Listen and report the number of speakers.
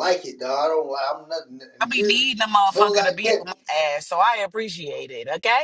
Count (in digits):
2